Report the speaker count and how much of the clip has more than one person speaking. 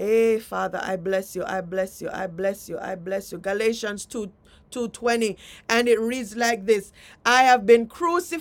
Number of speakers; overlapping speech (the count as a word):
one, no overlap